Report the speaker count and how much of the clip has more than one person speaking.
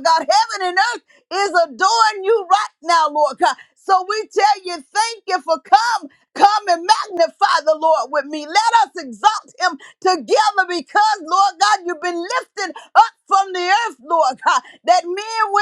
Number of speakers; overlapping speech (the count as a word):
one, no overlap